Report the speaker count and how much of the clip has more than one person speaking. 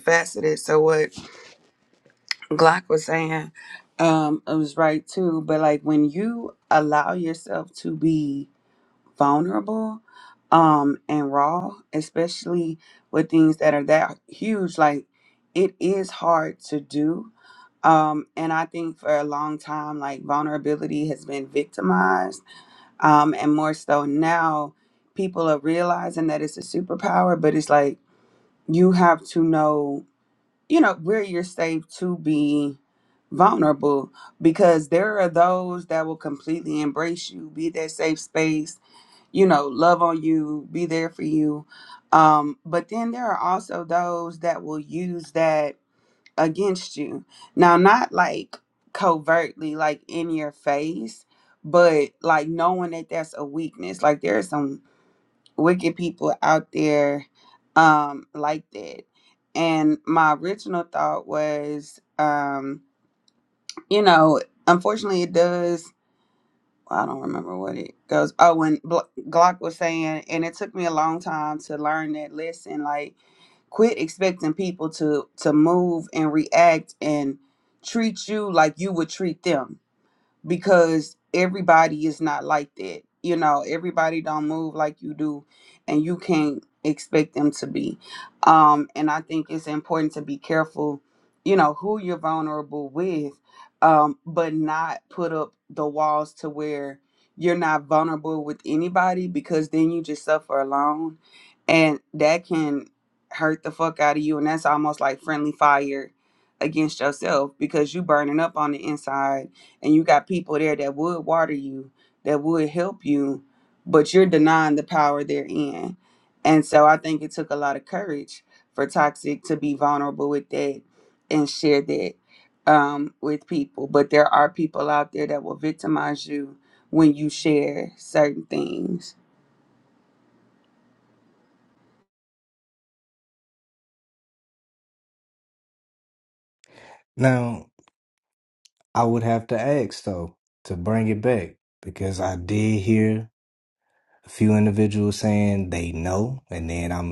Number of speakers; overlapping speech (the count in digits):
2, no overlap